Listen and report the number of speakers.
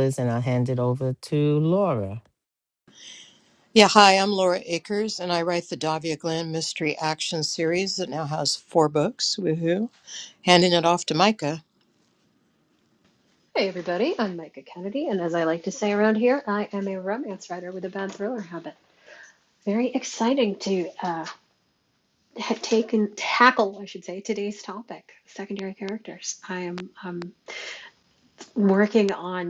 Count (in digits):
3